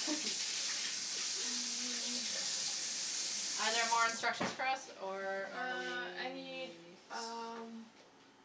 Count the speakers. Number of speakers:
2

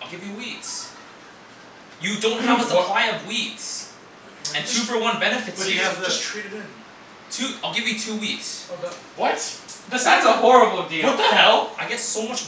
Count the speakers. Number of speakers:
4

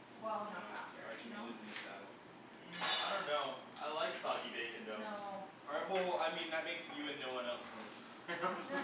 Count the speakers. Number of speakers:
3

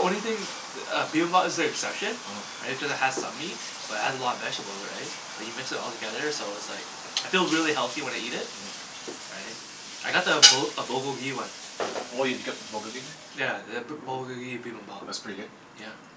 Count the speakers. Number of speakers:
2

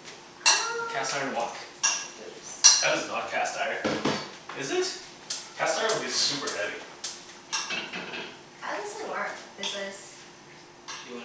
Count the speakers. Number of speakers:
3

